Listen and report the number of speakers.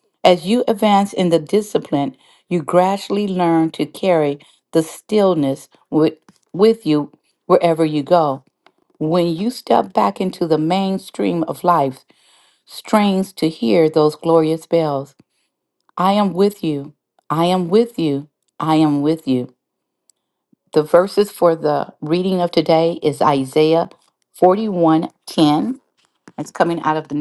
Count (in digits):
1